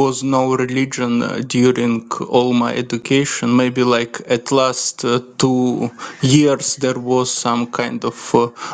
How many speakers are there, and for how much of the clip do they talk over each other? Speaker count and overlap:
1, no overlap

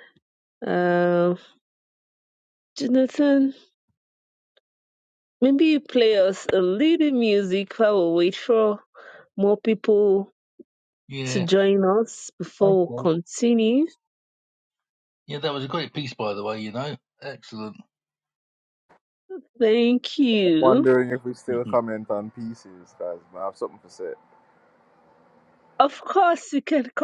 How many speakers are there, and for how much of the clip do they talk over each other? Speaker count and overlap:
3, about 5%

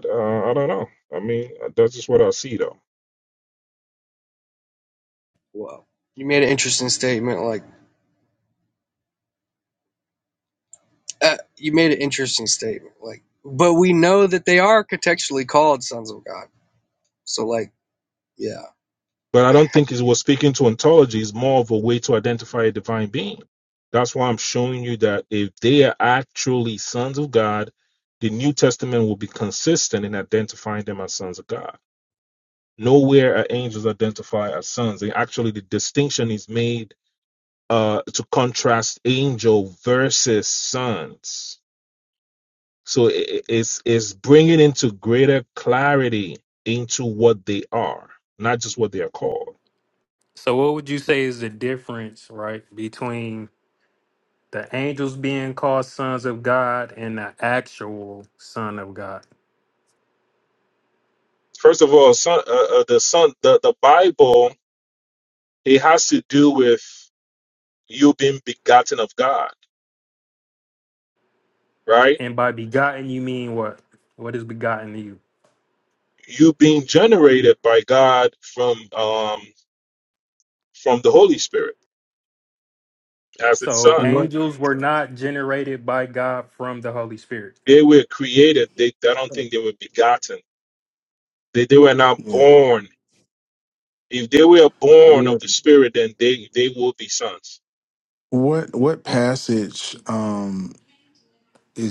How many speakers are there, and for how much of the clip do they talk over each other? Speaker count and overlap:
4, about 1%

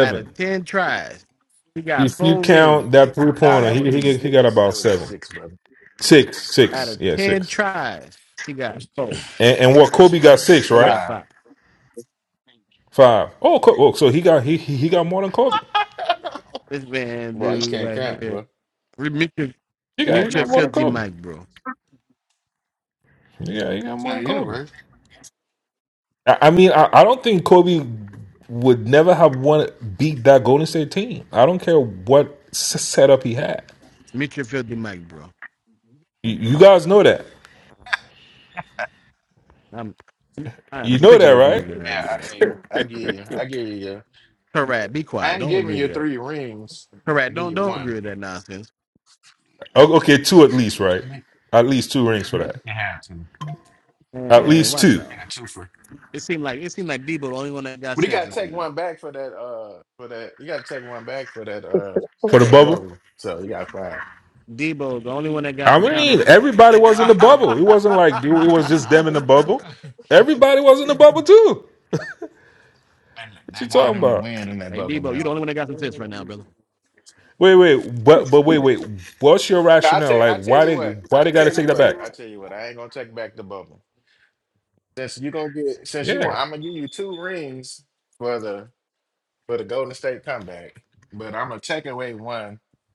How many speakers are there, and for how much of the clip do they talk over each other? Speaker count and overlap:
3, about 17%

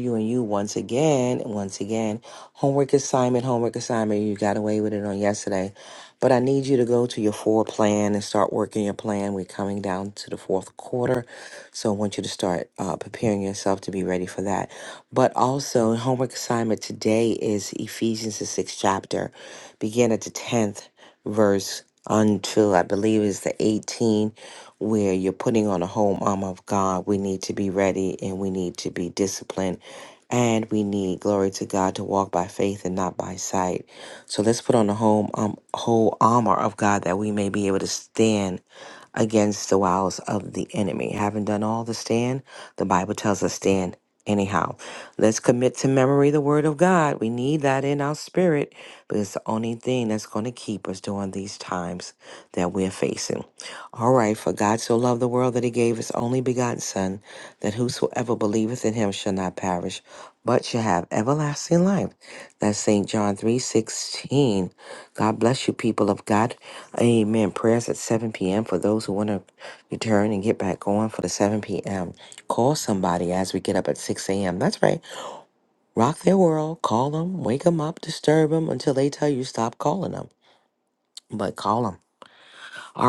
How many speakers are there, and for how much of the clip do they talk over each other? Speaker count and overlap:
1, no overlap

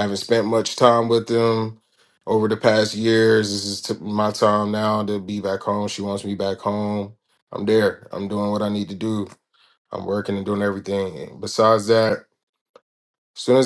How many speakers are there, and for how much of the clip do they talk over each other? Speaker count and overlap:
1, no overlap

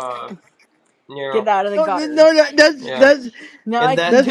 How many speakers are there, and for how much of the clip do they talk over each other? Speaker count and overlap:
3, about 36%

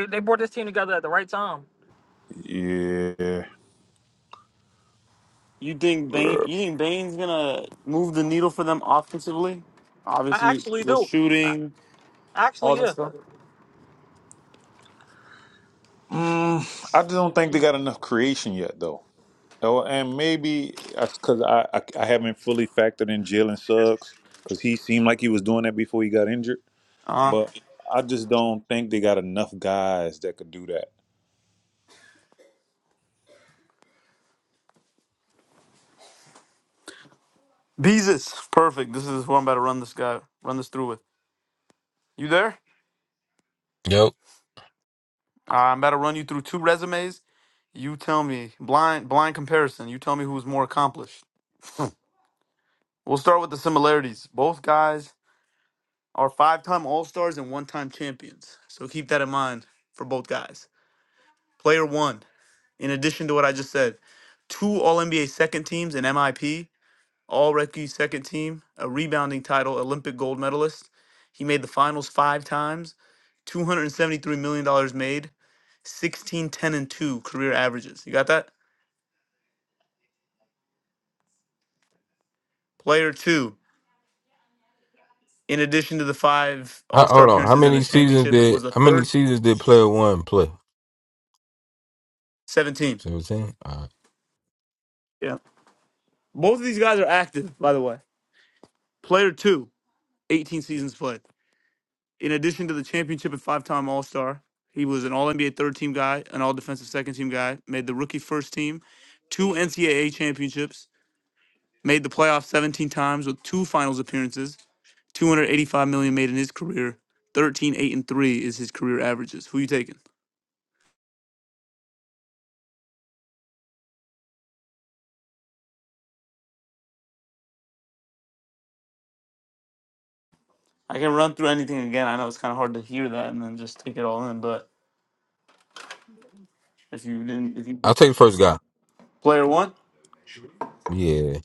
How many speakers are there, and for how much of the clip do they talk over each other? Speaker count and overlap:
4, about 2%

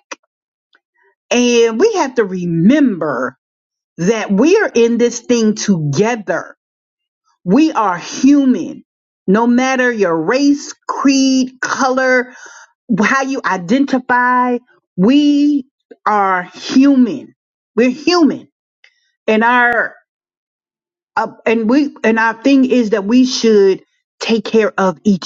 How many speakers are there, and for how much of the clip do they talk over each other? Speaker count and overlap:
1, no overlap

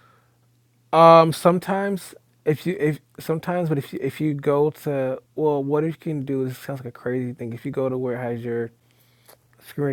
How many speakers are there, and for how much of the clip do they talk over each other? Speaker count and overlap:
1, no overlap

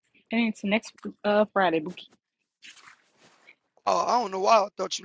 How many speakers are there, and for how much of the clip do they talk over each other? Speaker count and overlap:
2, no overlap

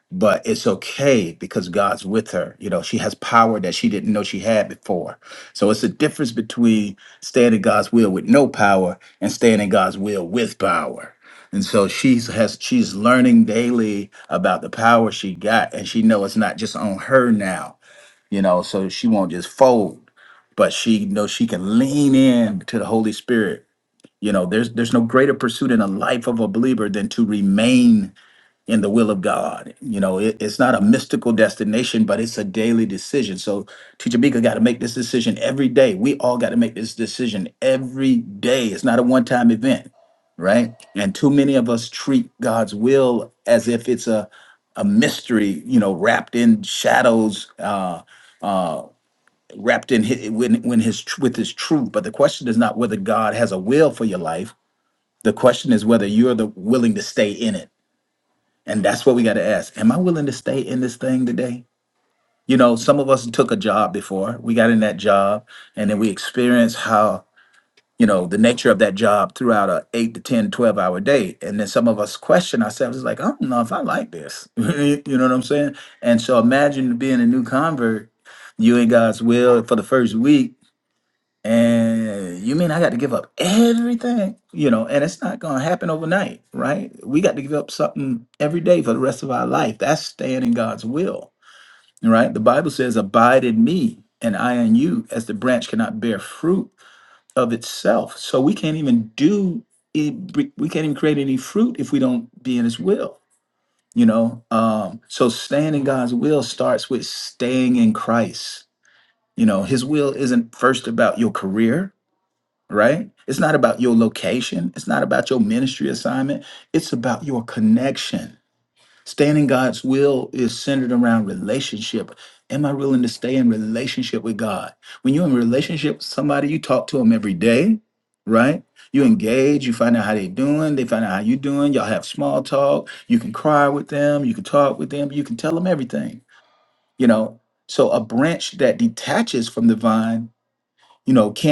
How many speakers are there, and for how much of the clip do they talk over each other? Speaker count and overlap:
1, no overlap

